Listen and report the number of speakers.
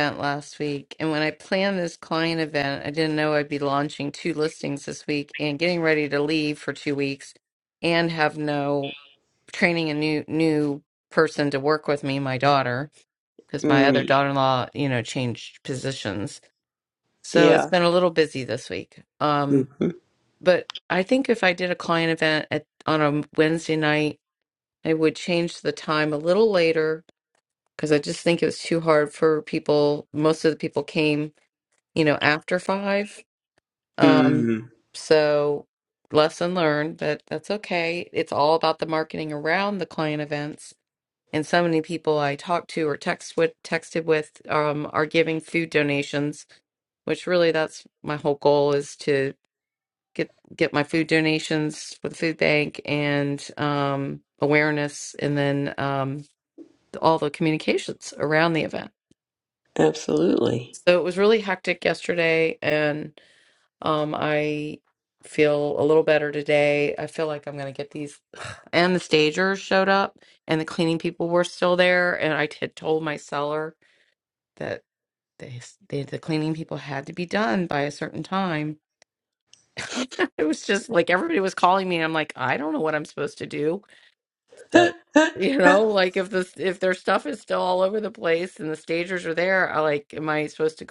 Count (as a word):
two